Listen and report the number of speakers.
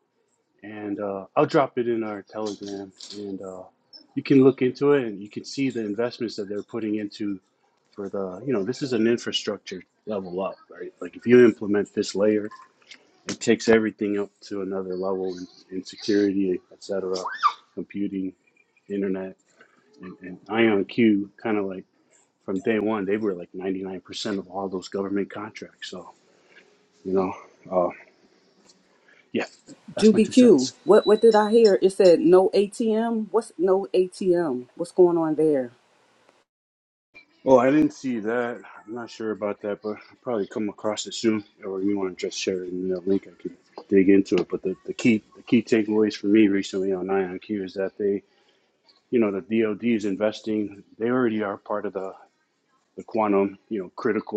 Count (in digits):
2